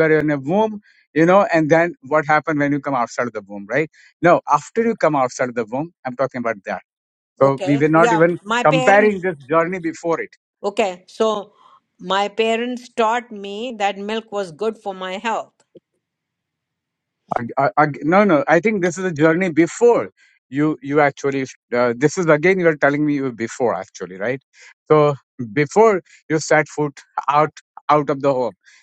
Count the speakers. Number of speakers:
2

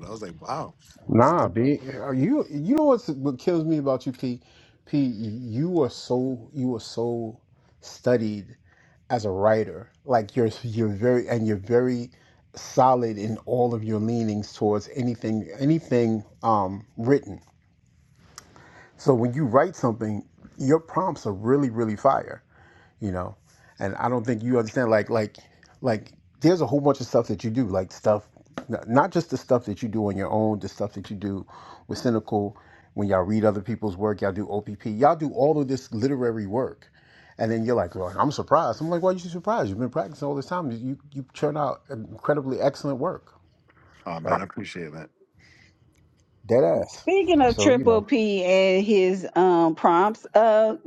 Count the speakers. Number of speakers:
3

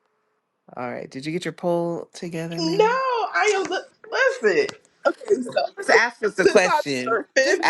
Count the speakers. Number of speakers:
2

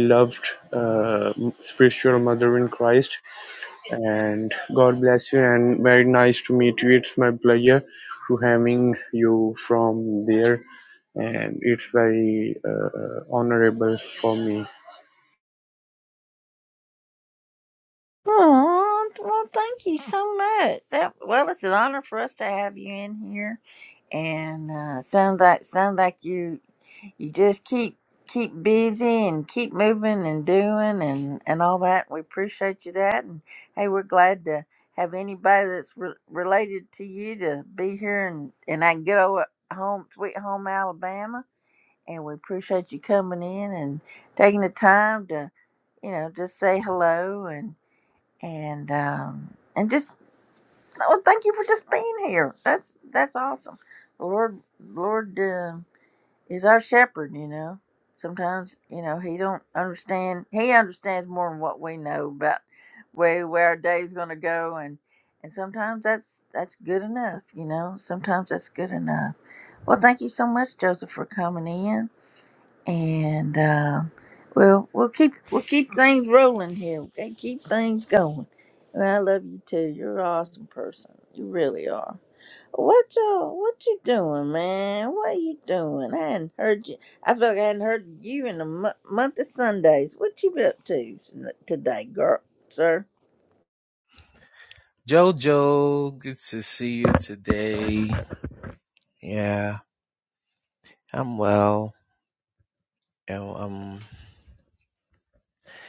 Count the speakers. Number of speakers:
3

